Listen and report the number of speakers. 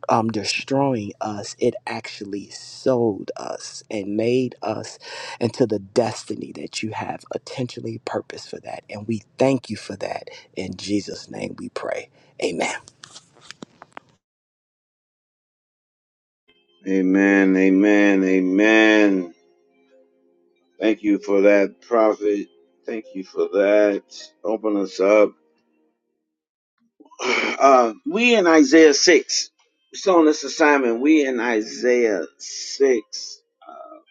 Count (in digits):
2